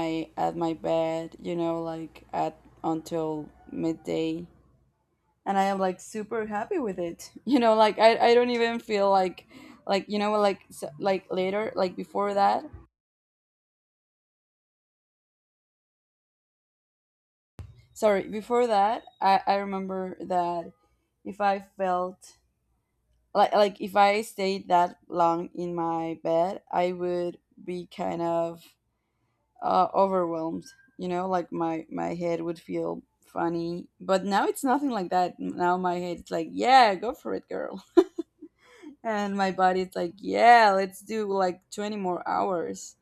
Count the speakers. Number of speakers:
1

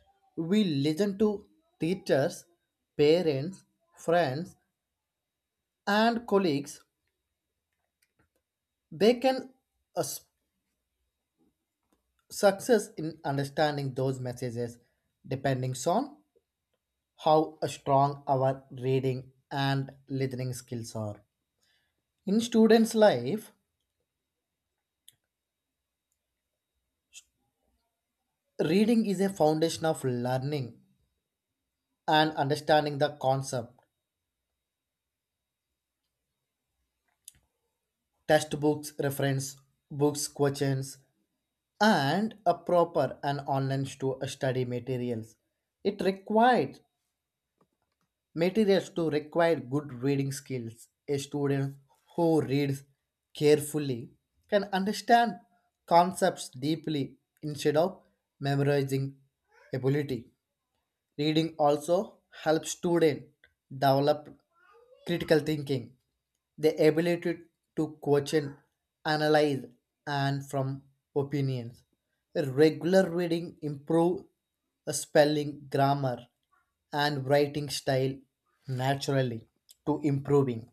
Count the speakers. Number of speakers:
1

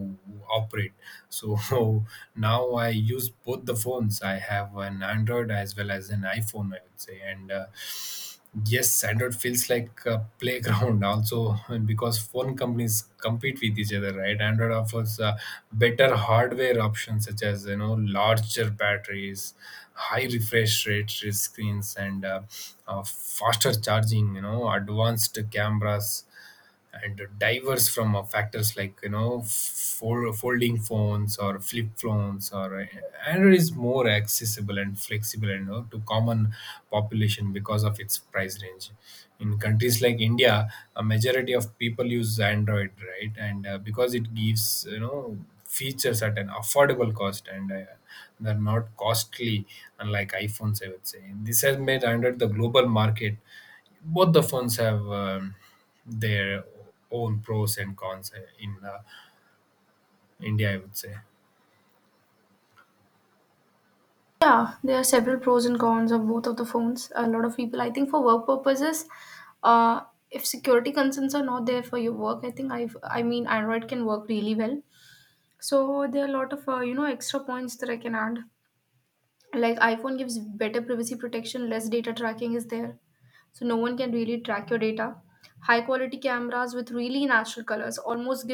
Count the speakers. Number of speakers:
2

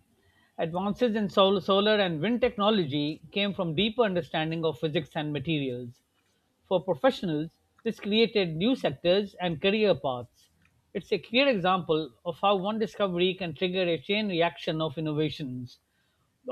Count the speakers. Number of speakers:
1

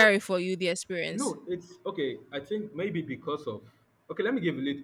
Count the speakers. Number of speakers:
2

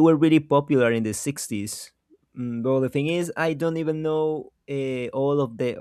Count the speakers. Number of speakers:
1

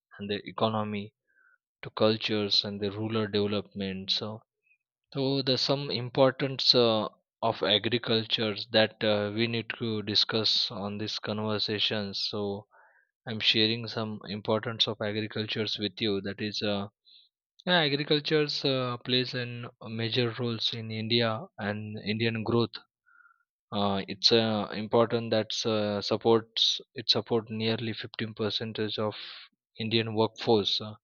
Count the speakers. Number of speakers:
1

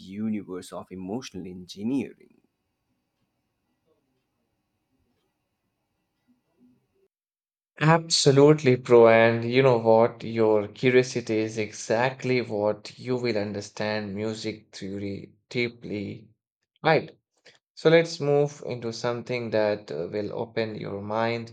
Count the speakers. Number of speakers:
2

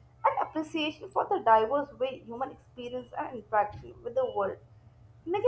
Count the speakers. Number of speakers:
1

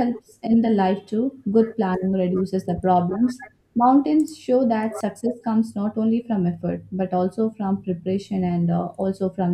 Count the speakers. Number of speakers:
1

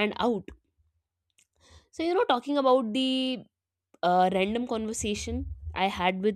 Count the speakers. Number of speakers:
1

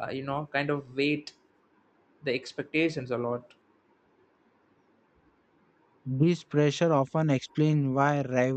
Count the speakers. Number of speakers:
2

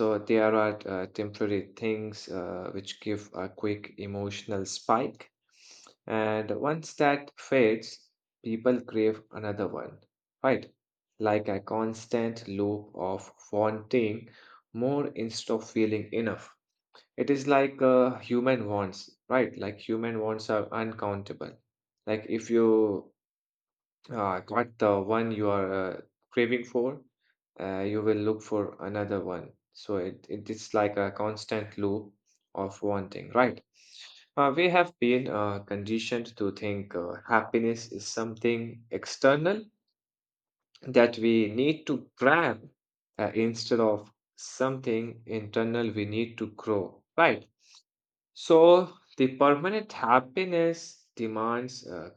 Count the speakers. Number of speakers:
1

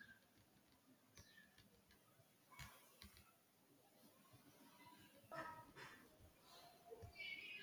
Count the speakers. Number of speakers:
0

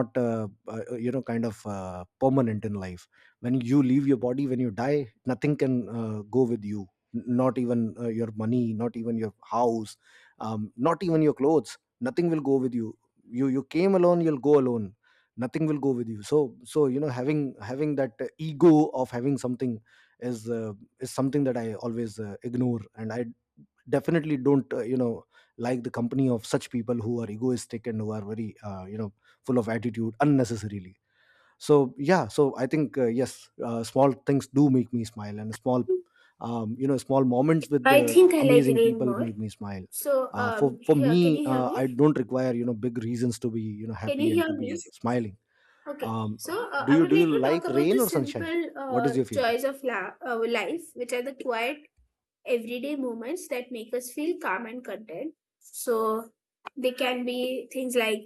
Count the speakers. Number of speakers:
2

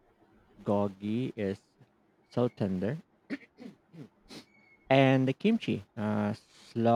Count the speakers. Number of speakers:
1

